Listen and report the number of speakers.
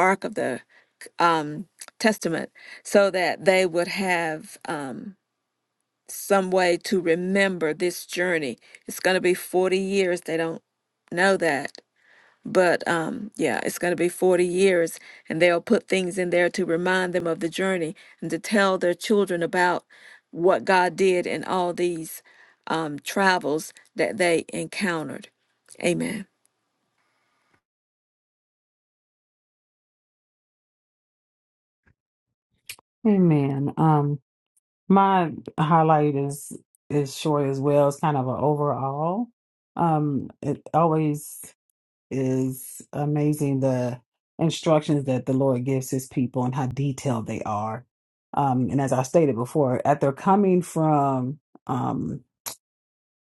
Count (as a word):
two